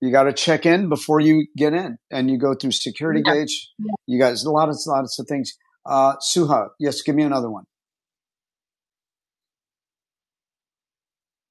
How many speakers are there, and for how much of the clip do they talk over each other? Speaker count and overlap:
1, no overlap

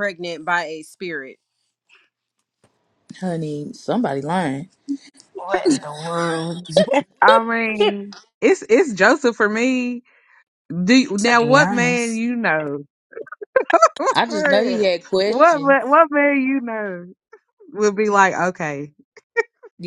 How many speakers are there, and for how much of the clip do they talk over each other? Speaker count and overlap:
4, about 12%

